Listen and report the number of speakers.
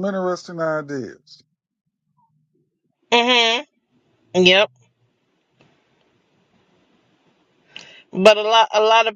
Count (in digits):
2